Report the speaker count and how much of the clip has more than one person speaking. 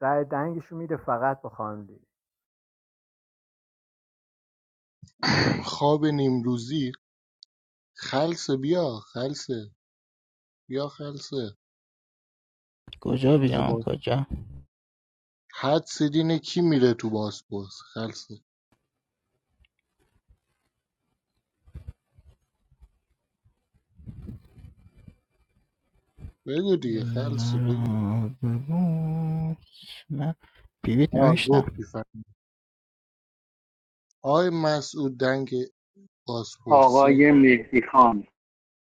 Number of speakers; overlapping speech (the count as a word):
four, about 5%